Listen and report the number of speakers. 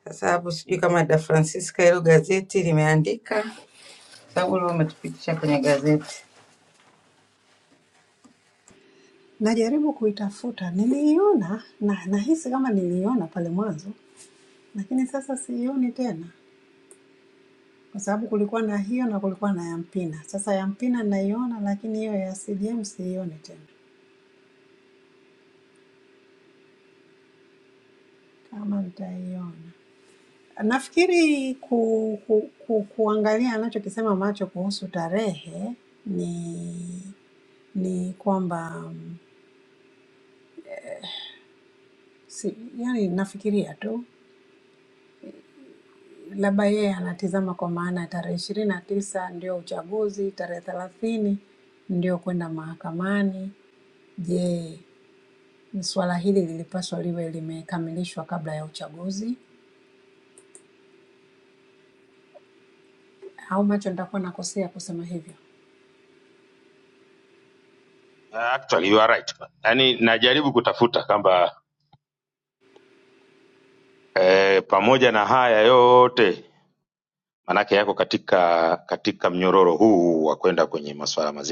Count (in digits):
3